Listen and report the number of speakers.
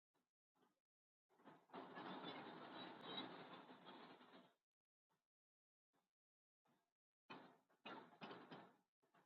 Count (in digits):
0